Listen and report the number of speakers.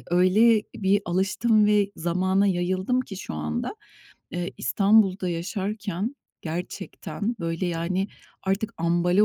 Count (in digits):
1